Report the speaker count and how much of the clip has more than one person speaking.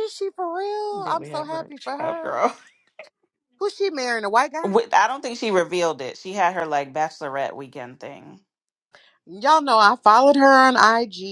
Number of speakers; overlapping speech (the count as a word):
two, about 13%